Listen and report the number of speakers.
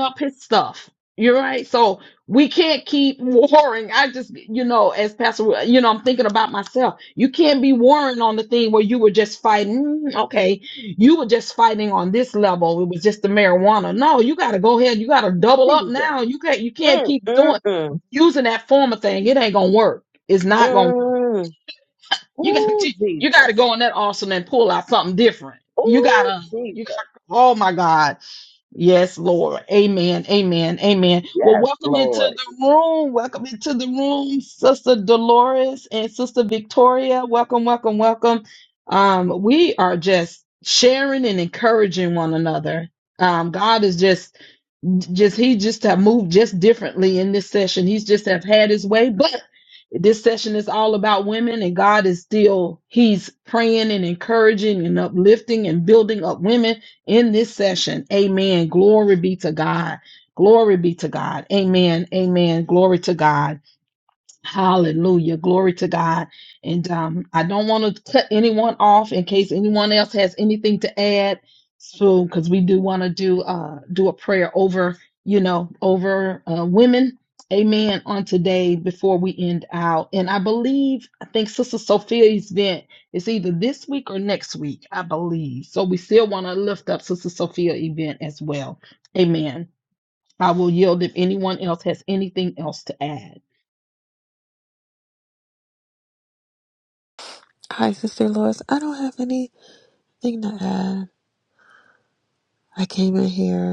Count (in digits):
3